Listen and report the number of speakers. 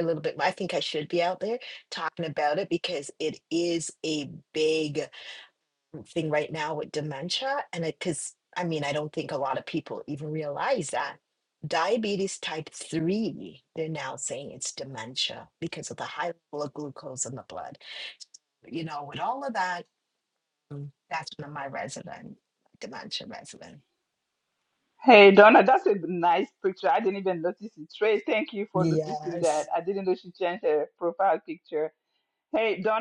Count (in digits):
2